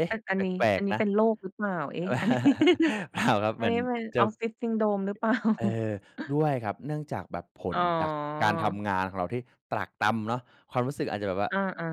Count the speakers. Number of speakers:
2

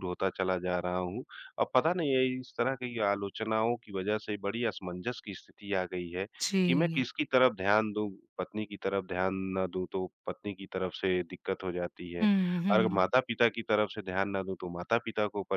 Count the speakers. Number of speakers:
2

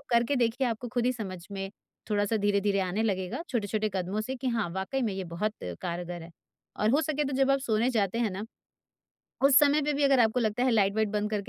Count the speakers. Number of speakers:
1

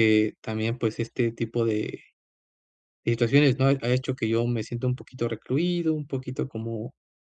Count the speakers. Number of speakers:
1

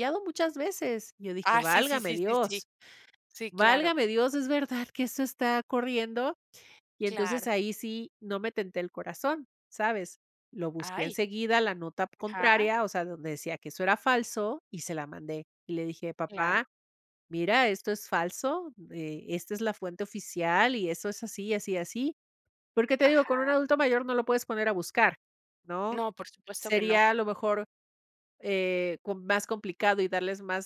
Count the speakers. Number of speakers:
2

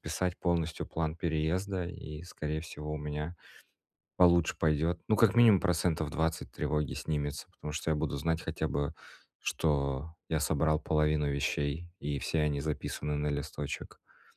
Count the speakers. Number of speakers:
1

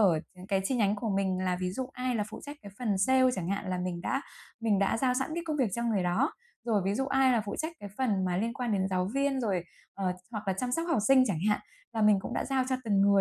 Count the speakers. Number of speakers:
1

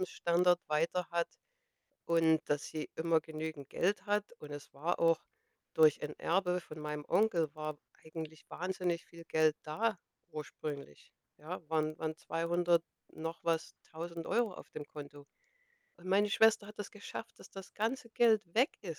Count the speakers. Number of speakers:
1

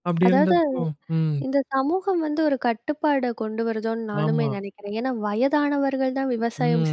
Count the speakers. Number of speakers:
2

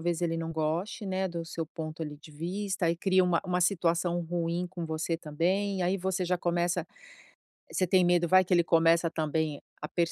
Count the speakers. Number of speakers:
1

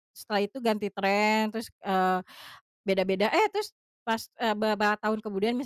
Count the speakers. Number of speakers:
1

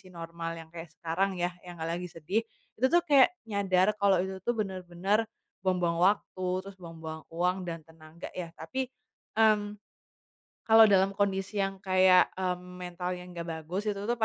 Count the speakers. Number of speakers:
1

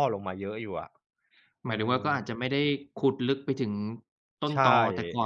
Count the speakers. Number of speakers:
2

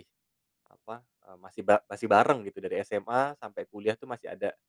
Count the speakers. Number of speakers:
1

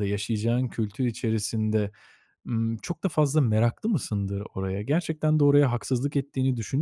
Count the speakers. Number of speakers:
1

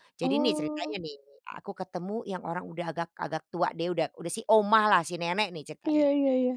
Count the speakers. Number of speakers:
2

